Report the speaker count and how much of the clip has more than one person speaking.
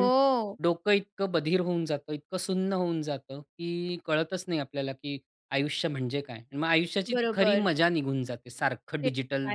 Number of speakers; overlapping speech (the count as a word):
two, about 13%